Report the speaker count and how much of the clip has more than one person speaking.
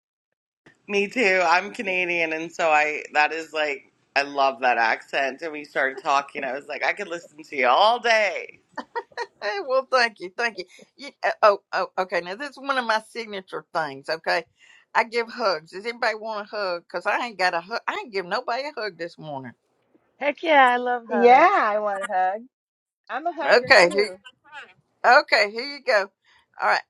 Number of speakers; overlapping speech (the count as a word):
four, about 4%